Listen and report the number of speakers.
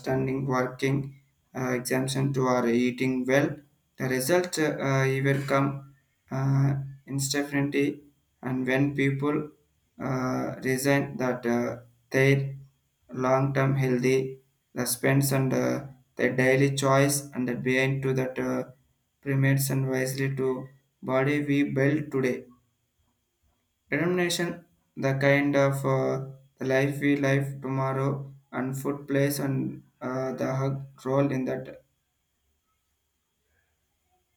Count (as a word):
one